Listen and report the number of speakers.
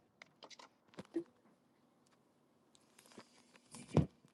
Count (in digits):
0